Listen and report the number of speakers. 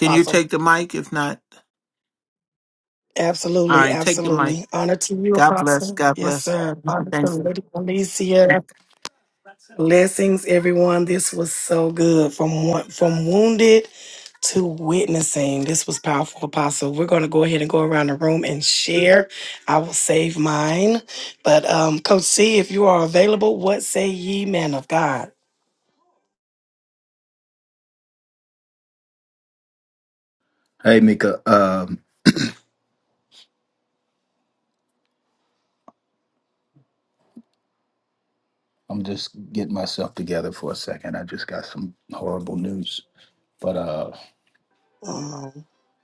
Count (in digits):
3